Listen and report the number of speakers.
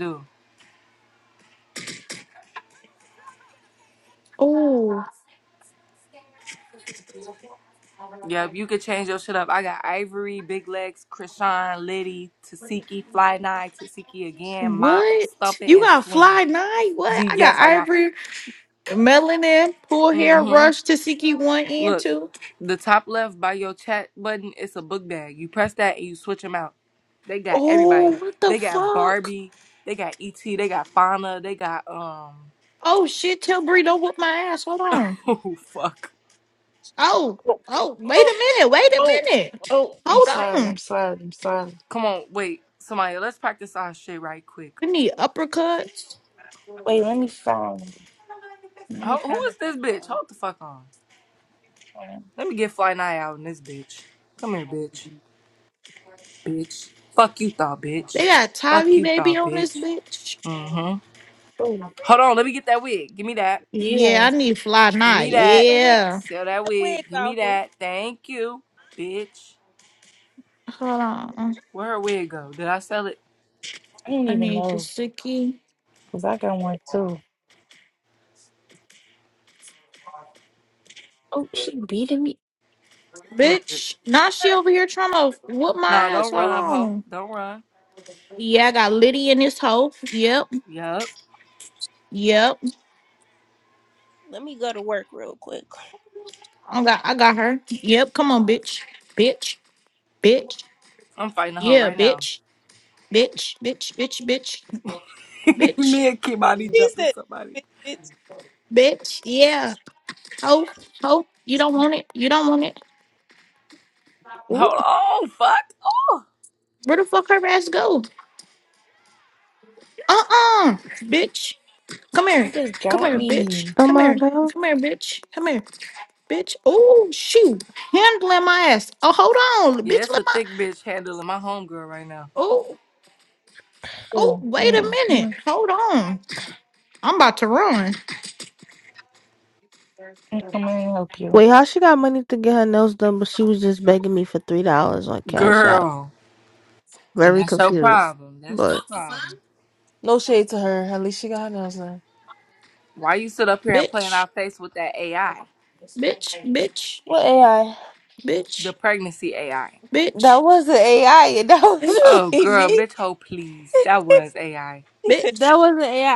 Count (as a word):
five